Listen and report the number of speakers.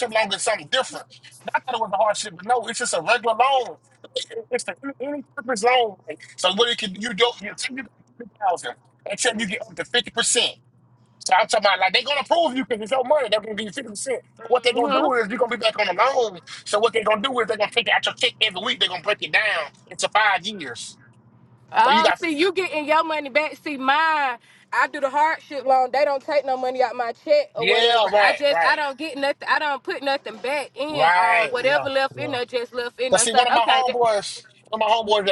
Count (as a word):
two